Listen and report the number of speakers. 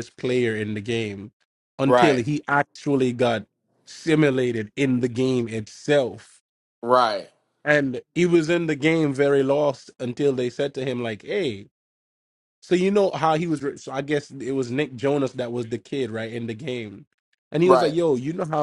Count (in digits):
2